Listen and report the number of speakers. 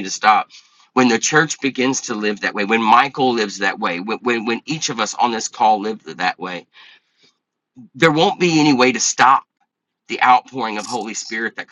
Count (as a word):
one